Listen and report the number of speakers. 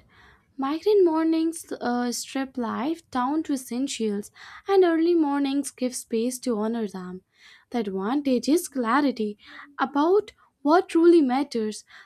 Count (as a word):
one